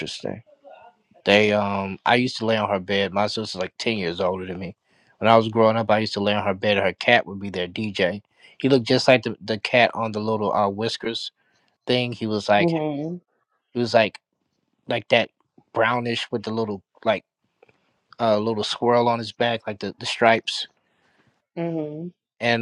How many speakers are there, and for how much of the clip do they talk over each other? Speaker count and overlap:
two, about 1%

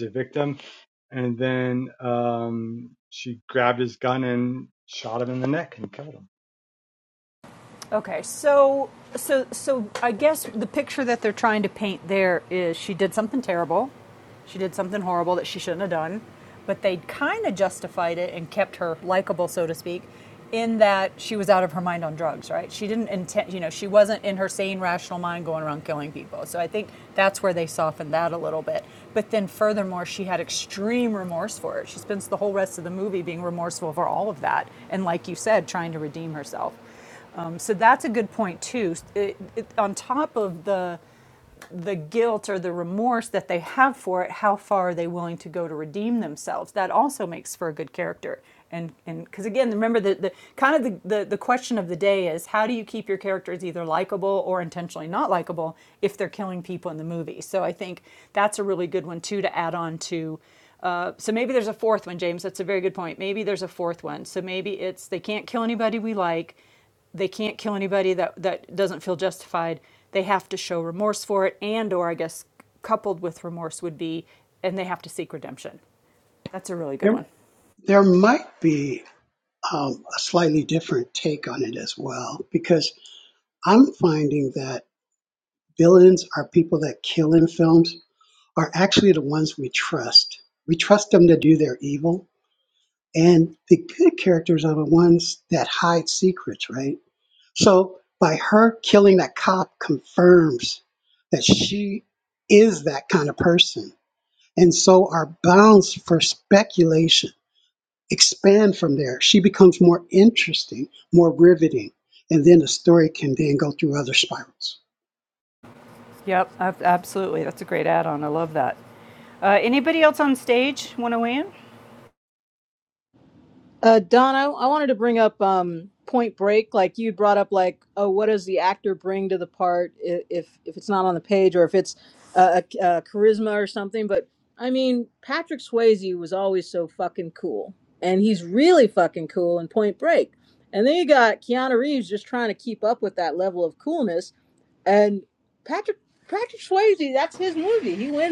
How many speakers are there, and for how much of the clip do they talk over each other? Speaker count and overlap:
four, under 1%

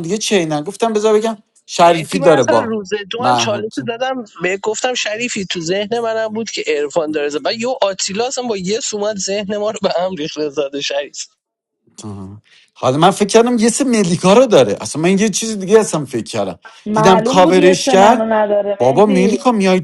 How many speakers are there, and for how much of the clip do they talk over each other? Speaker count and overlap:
three, about 16%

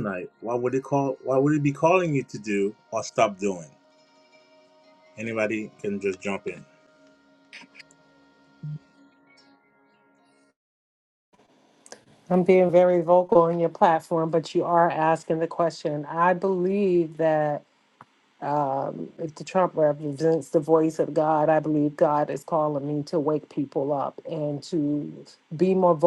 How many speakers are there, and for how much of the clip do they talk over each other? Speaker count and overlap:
two, no overlap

